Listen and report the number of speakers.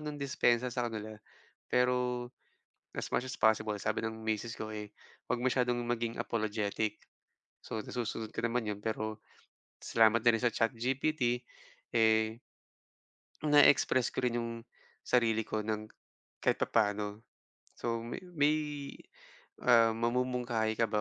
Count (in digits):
1